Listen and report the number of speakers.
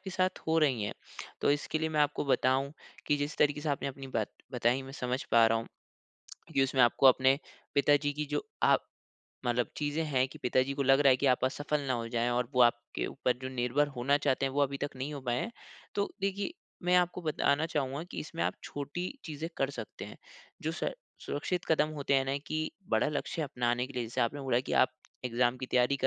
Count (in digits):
1